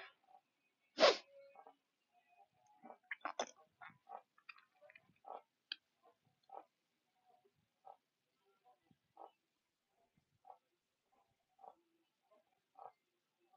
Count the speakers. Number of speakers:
0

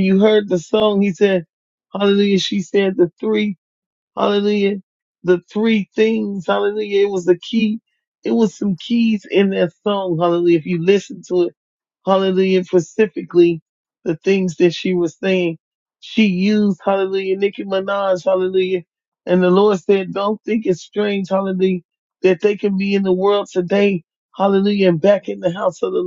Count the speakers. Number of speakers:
1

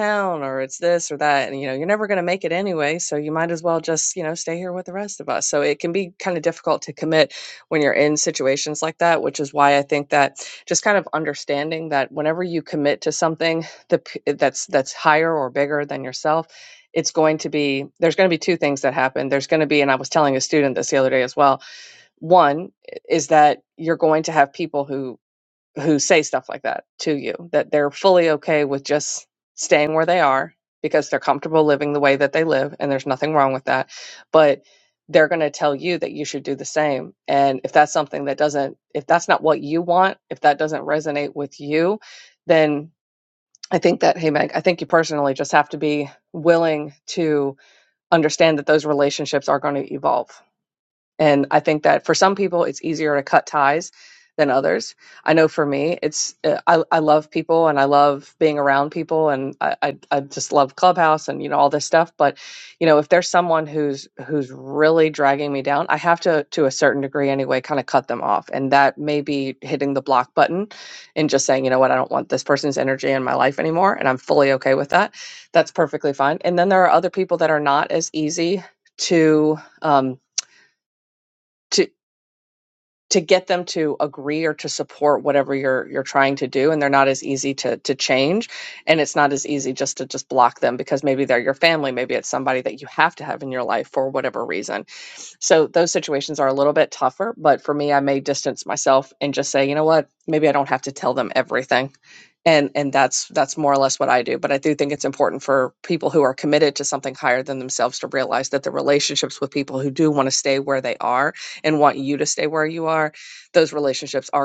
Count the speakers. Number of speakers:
1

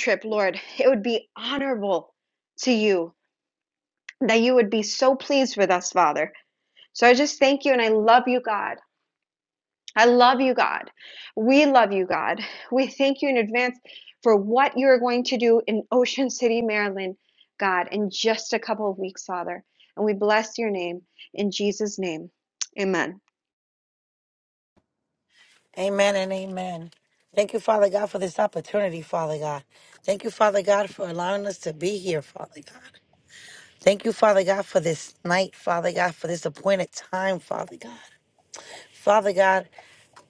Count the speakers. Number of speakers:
2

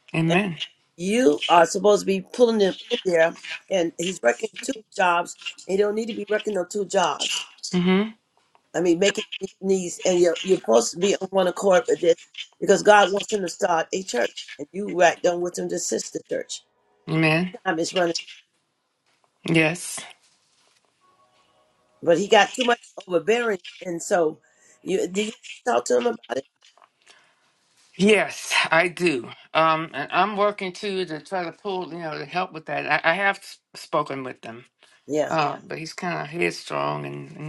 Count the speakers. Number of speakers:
2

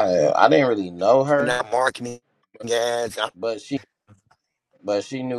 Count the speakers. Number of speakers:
2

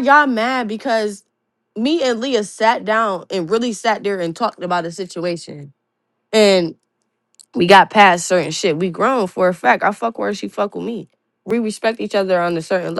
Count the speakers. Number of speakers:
1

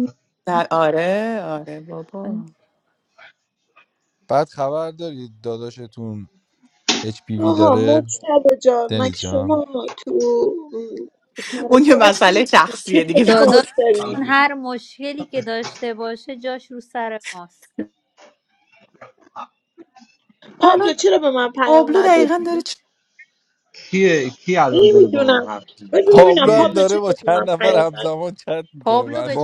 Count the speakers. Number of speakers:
5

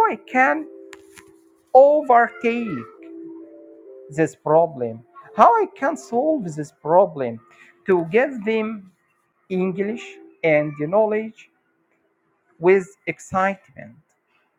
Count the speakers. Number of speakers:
1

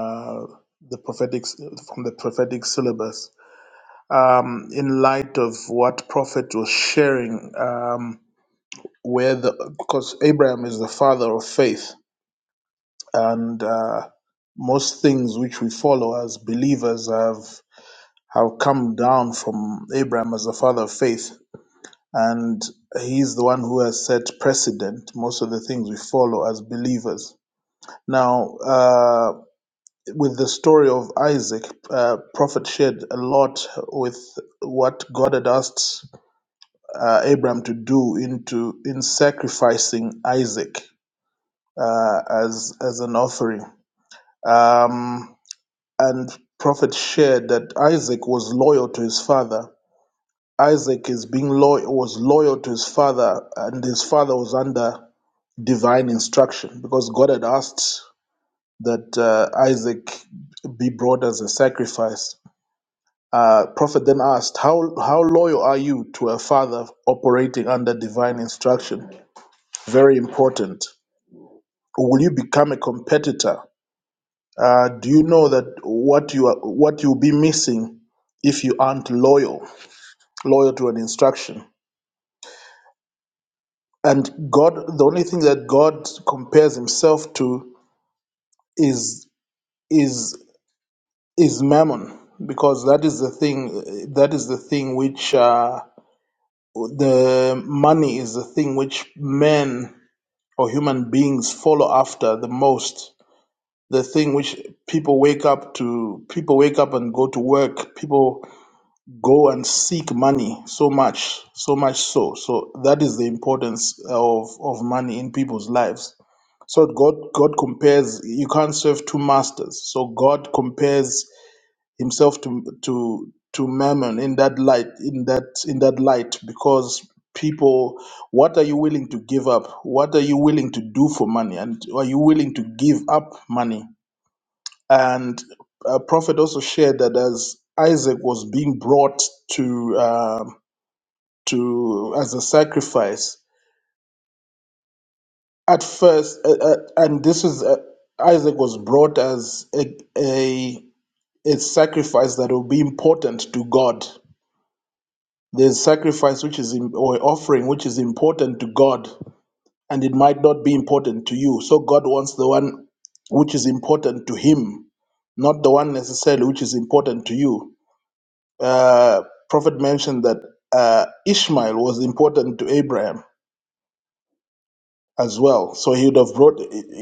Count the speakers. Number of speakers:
1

